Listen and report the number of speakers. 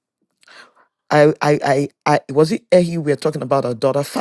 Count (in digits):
1